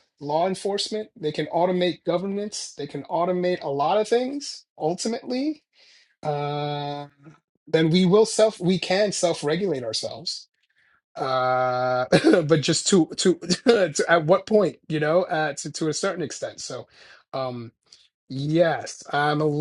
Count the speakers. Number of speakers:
1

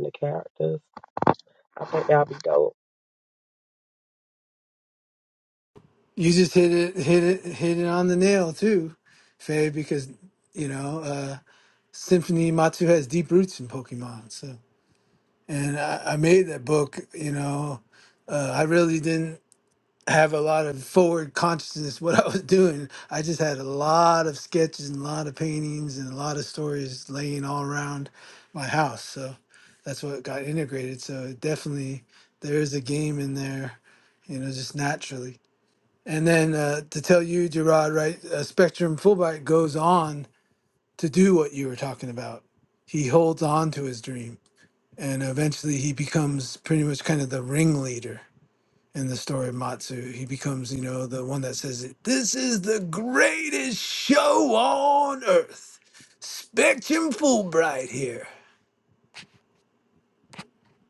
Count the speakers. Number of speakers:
2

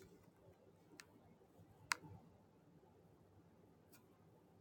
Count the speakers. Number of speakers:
0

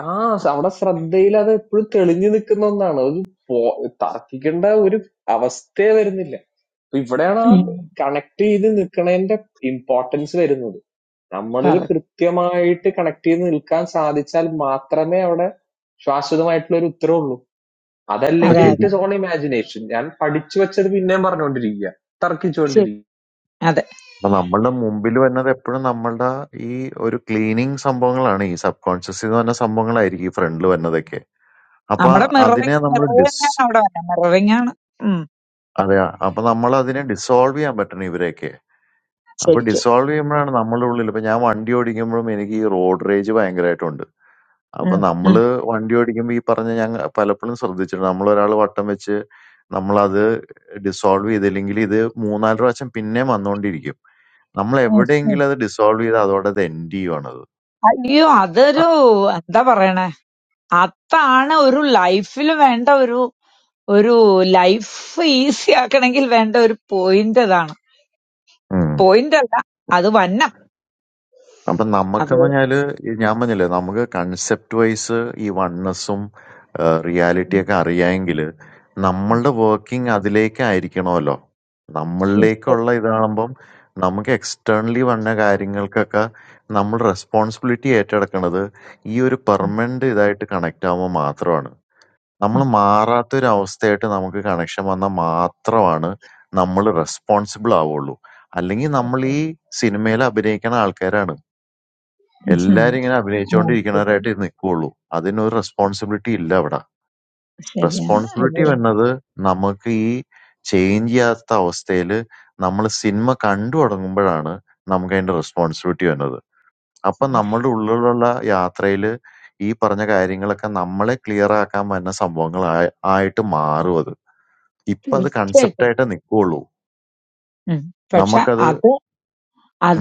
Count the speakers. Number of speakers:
3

